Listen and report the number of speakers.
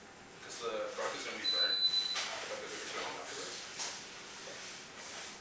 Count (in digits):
1